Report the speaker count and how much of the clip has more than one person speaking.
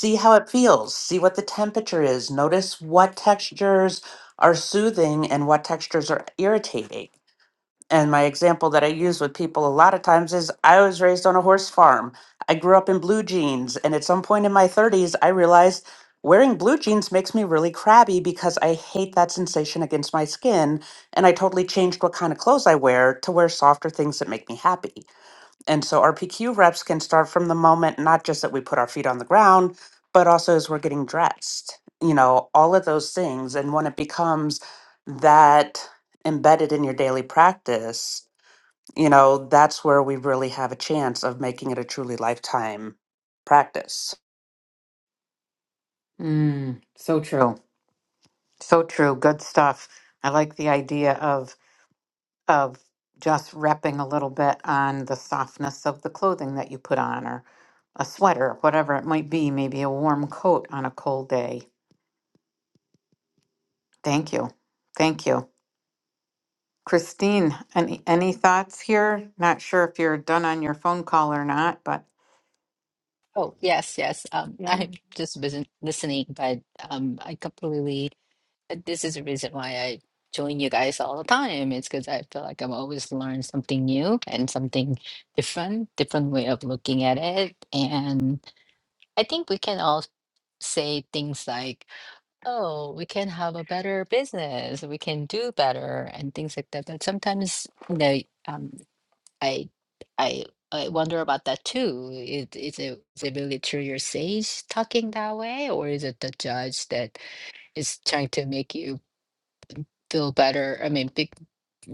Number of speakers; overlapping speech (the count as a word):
three, under 1%